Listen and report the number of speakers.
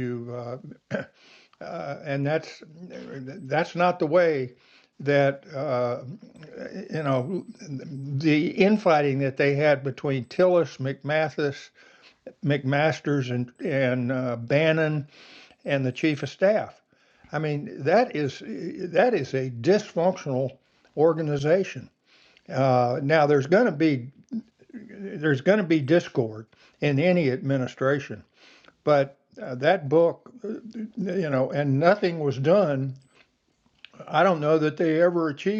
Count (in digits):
1